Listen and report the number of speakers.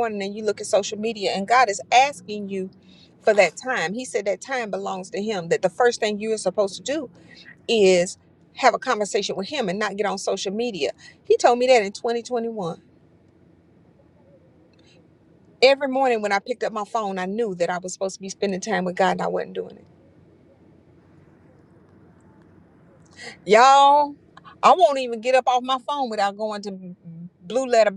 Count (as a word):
one